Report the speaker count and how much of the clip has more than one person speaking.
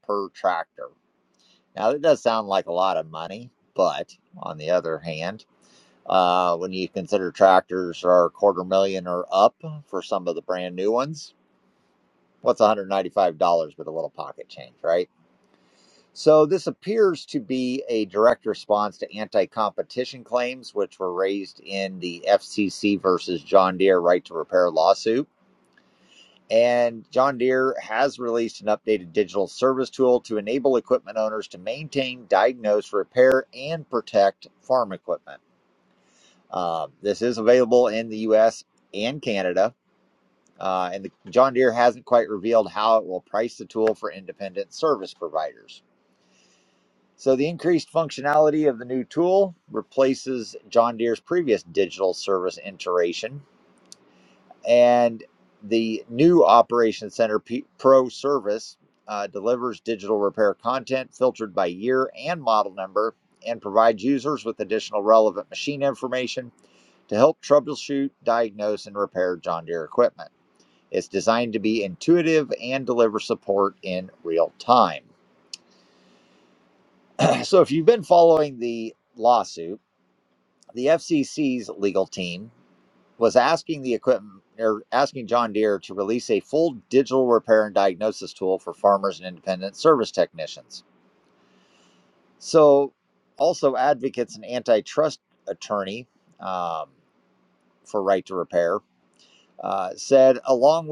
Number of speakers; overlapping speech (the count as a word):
one, no overlap